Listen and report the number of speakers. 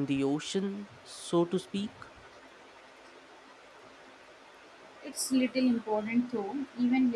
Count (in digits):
2